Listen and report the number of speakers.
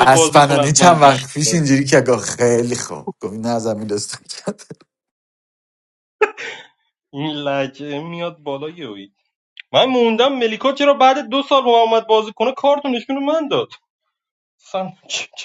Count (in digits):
2